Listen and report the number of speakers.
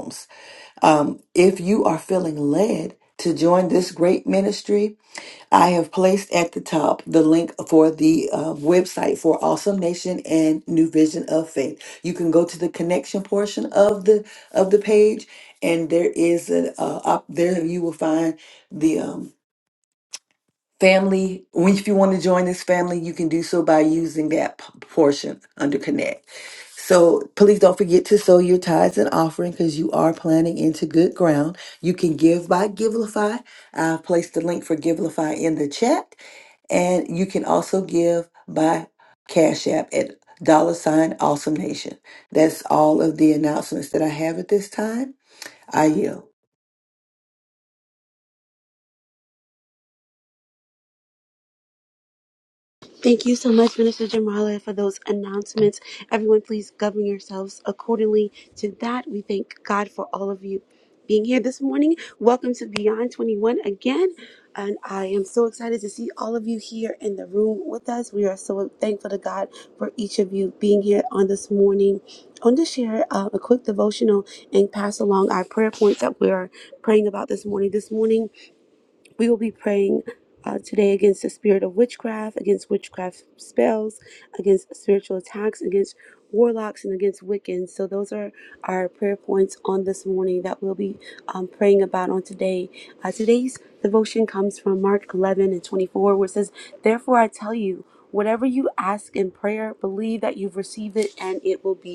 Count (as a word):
two